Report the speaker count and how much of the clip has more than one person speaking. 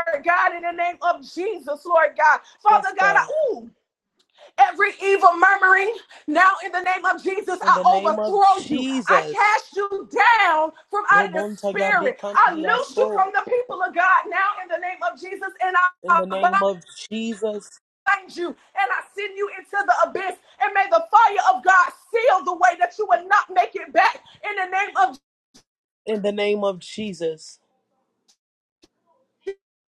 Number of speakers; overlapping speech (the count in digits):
2, about 17%